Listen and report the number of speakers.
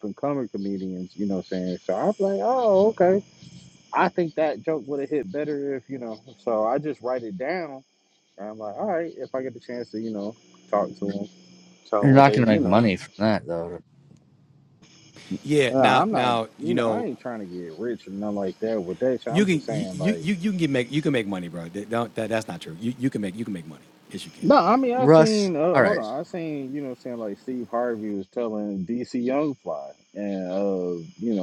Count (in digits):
3